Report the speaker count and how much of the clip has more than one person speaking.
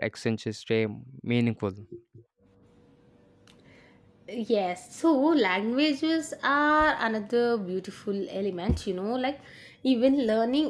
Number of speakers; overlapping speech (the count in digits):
2, no overlap